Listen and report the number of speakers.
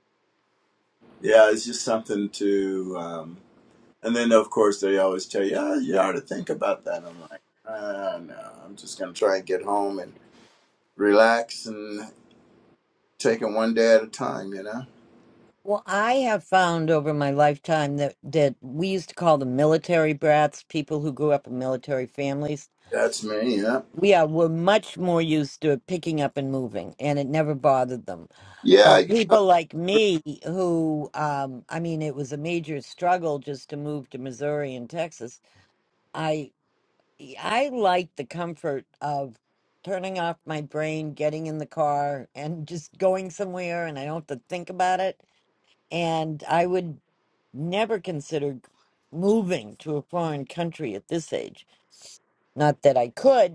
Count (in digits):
2